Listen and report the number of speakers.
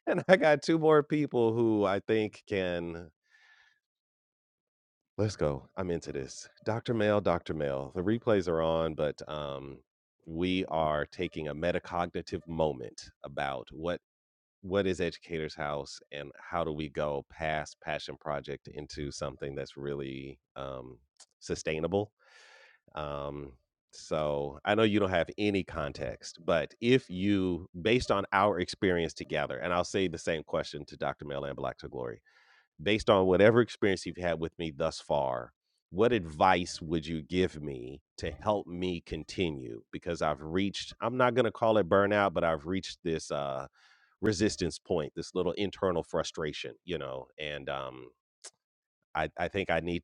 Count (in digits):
1